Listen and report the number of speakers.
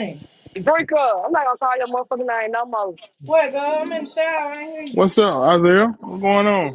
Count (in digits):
3